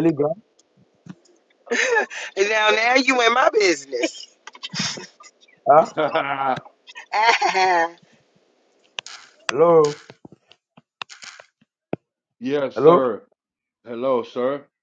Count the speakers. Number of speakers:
3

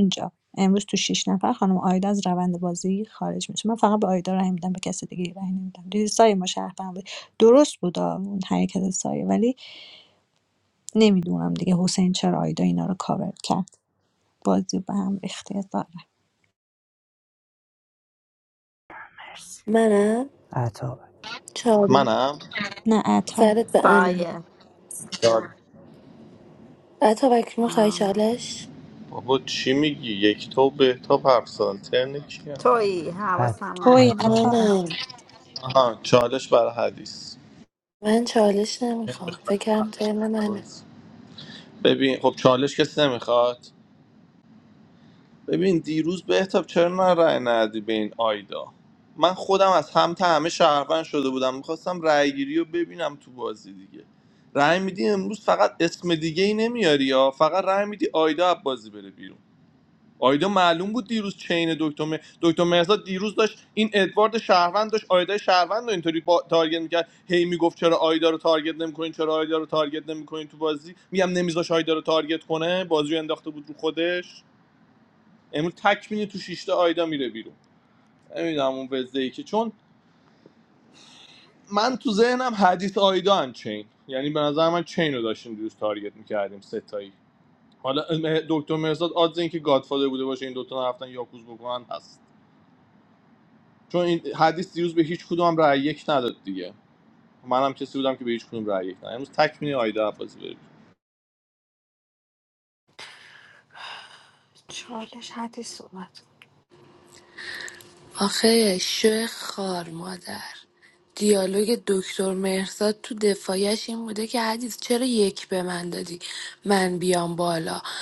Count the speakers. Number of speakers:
6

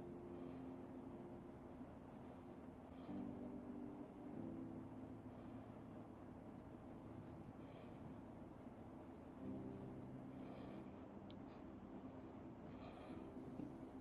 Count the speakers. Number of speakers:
0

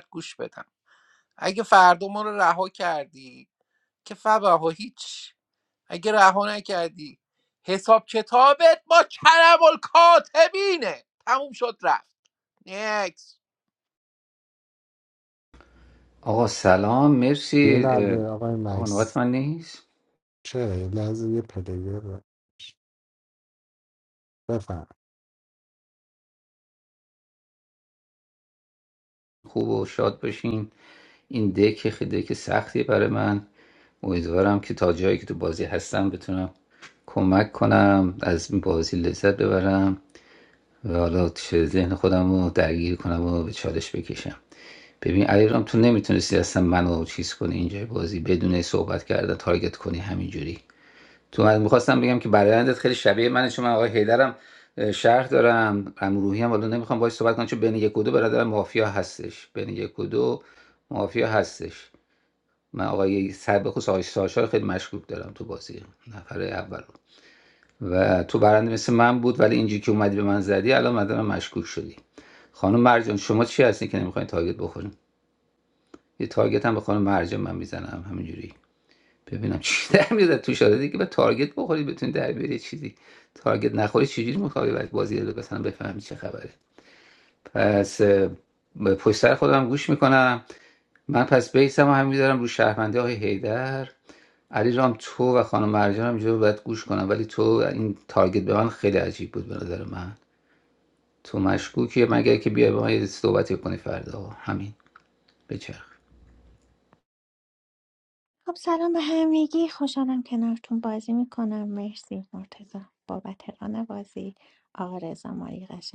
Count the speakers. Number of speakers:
4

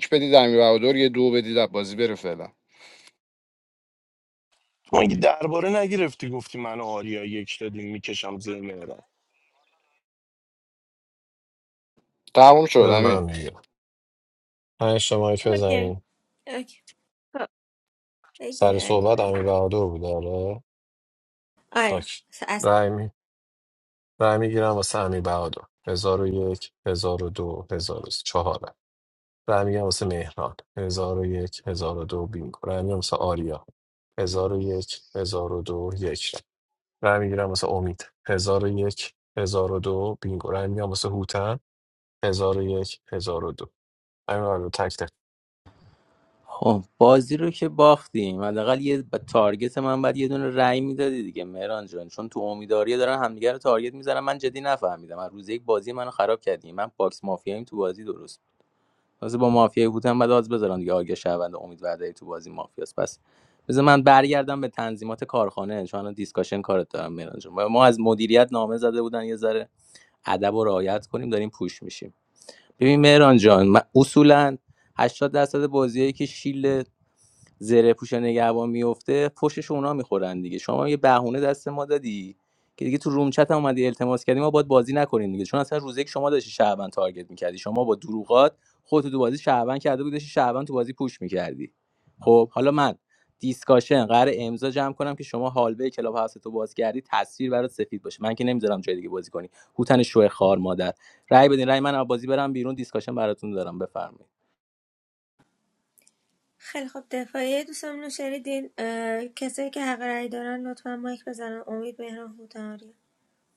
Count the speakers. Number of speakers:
5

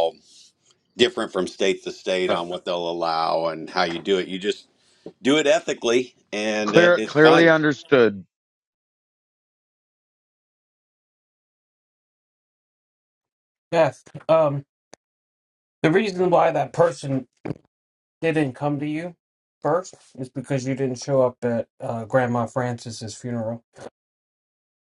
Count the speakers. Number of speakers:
3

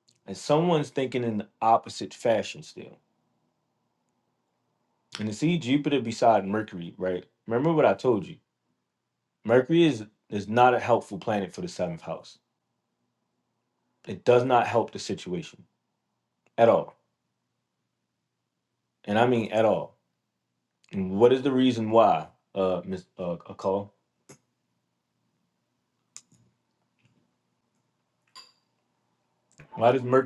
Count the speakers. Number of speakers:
1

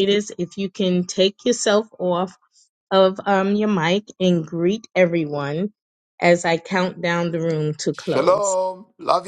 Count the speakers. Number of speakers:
2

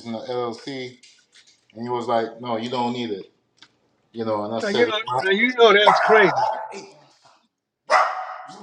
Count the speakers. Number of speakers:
2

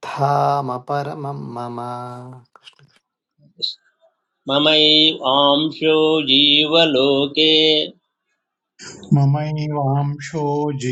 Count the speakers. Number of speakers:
3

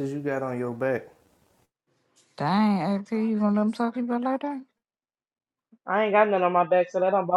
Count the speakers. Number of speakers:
3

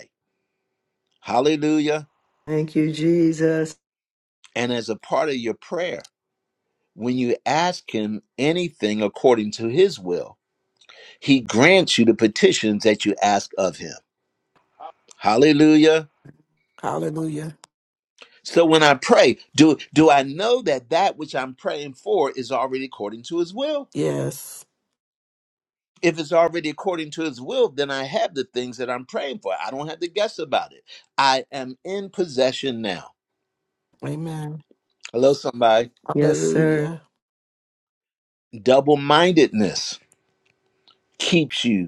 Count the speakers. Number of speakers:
3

